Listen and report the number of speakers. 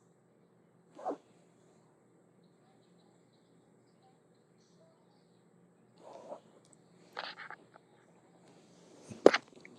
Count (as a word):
zero